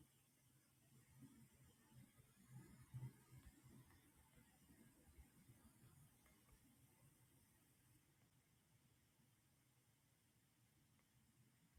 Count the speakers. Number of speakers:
zero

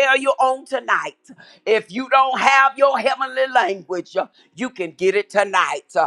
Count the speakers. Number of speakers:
one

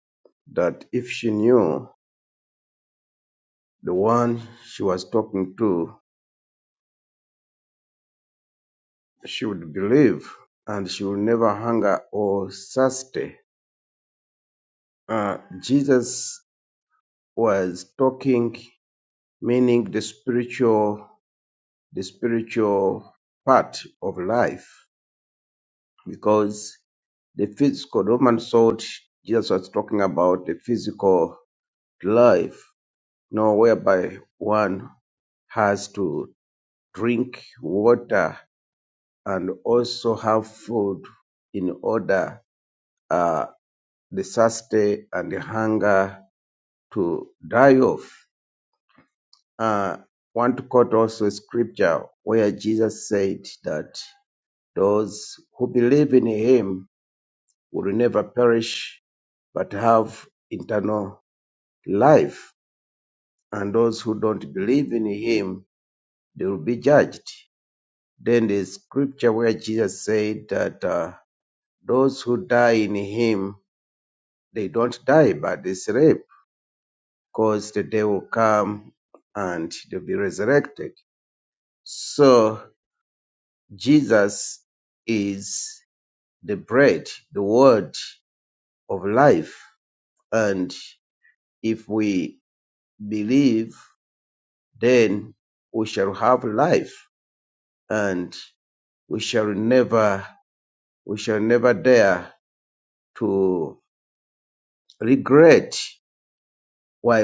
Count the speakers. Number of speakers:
one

